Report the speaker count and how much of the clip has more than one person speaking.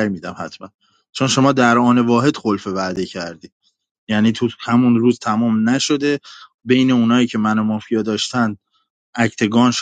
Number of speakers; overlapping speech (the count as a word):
one, no overlap